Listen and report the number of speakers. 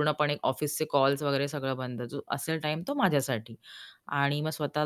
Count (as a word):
one